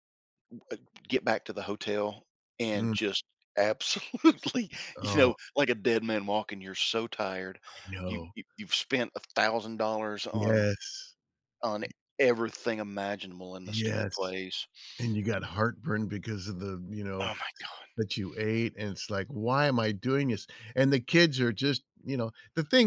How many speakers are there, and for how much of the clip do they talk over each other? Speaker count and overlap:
2, about 8%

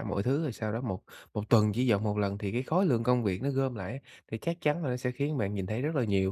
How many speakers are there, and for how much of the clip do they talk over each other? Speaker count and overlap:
1, no overlap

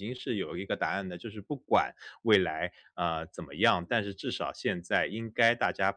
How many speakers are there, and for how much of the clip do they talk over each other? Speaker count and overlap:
1, no overlap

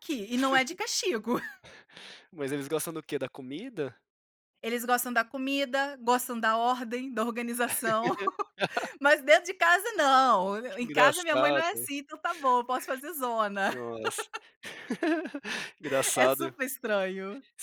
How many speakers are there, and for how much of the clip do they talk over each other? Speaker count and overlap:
2, about 8%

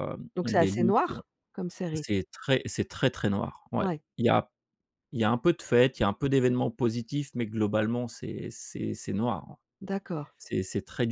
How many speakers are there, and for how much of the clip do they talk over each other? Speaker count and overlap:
2, about 10%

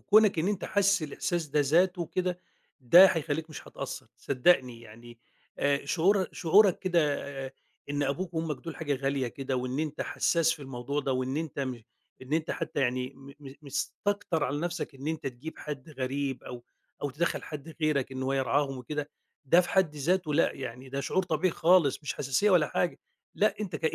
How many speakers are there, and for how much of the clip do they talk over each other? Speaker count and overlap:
1, no overlap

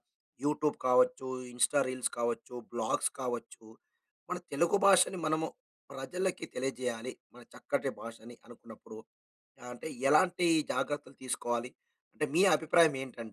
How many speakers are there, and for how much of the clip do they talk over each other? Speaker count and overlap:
1, no overlap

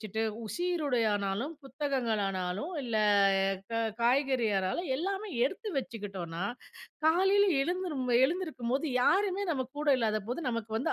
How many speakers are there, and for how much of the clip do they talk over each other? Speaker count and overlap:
1, no overlap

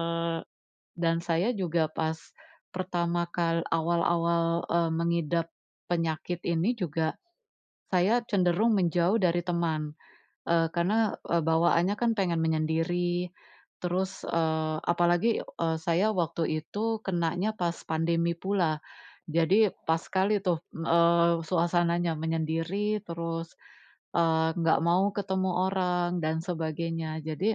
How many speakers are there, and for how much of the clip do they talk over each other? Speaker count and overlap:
1, no overlap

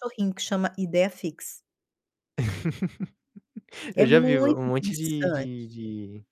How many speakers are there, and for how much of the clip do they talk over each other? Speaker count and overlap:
2, about 24%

